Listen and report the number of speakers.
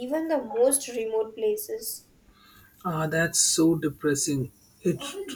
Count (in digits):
2